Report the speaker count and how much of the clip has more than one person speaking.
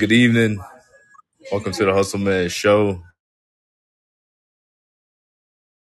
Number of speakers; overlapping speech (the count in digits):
1, no overlap